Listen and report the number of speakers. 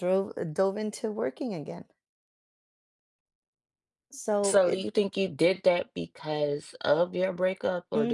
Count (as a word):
two